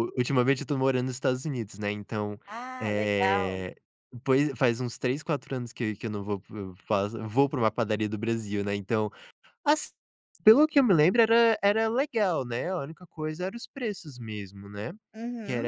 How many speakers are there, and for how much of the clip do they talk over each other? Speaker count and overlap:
two, about 7%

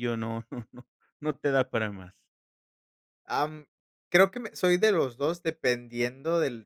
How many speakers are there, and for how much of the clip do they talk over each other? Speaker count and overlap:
two, no overlap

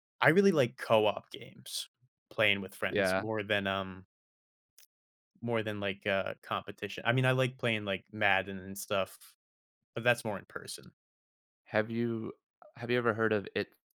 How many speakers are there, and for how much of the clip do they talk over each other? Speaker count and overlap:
two, about 2%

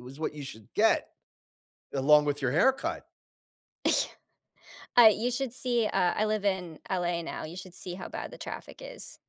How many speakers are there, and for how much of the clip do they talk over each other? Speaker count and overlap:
two, no overlap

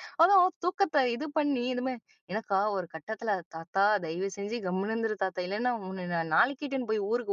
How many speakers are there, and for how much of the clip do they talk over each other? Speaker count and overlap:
one, no overlap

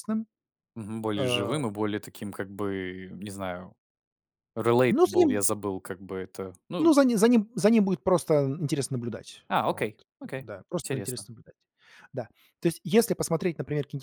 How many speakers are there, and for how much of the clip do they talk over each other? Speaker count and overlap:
two, about 13%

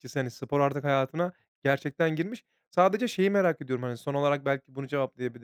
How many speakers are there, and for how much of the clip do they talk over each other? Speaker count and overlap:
one, no overlap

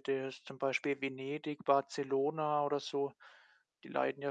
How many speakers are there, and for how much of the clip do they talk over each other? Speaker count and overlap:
one, no overlap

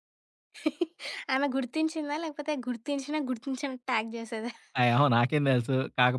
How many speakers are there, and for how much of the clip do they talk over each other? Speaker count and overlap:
two, no overlap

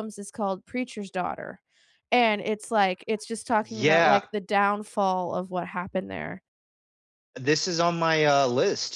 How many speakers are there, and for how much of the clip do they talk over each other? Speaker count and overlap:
two, about 6%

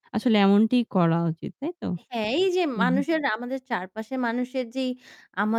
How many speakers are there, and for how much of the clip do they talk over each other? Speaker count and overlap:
two, about 5%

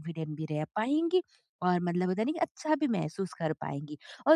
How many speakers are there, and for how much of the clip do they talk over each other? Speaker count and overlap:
one, no overlap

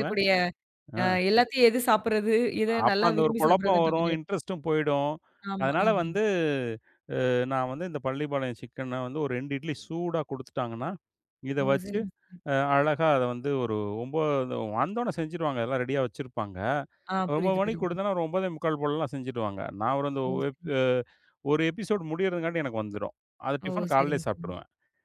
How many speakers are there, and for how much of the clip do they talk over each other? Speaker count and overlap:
two, about 15%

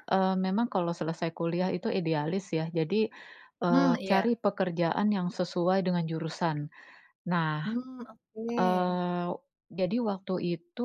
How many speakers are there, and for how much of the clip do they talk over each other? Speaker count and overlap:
two, about 9%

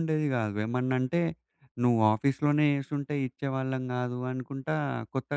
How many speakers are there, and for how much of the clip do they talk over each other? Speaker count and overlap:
one, no overlap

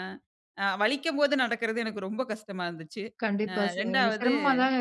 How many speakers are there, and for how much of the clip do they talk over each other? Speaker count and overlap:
two, about 17%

